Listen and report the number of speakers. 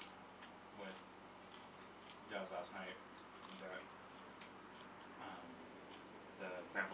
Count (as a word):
one